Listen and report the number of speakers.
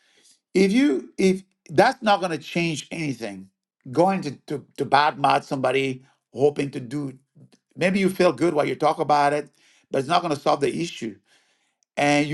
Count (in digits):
1